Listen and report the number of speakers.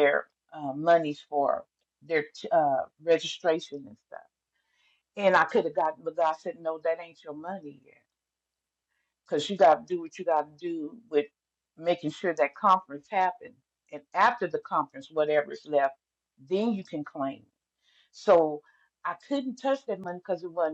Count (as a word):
one